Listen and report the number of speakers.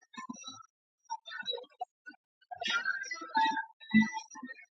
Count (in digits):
0